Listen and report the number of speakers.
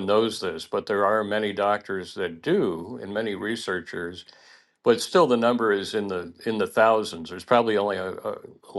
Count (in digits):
1